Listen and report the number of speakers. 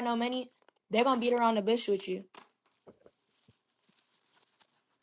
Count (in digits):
1